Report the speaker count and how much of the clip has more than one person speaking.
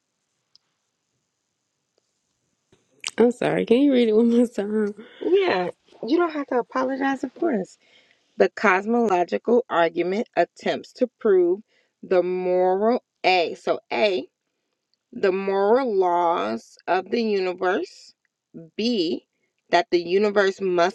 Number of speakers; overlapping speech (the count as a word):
two, no overlap